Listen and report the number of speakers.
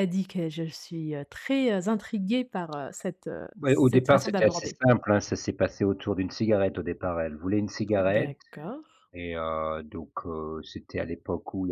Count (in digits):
2